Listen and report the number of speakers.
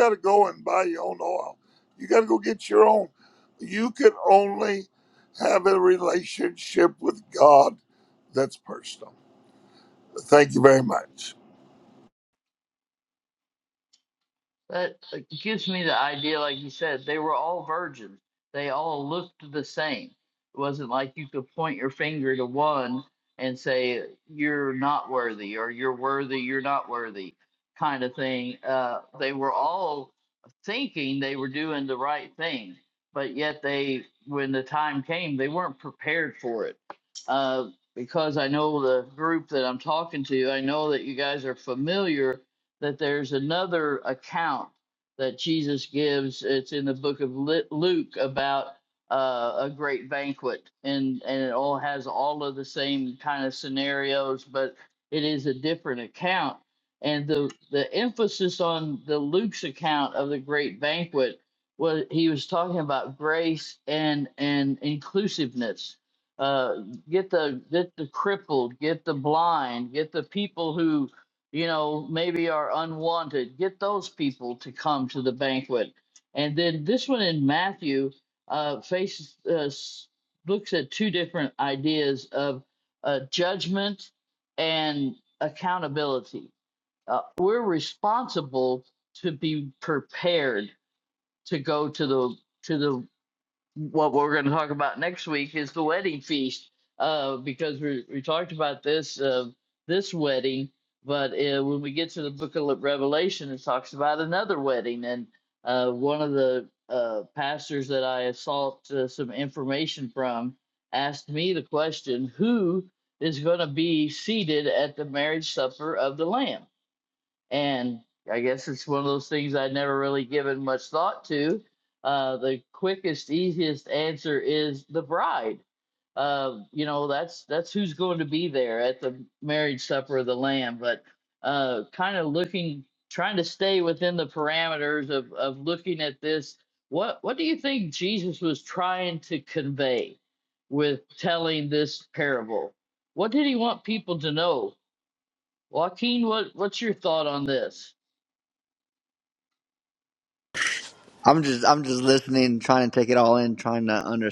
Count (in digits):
3